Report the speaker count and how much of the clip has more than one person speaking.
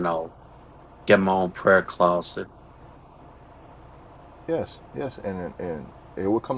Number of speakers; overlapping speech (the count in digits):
2, no overlap